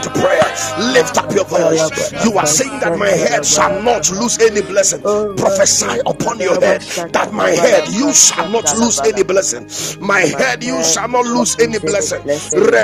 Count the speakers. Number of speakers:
2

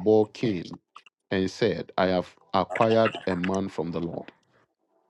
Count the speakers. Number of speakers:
1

